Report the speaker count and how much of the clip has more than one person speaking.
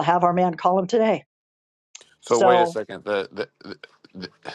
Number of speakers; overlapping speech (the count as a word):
two, about 7%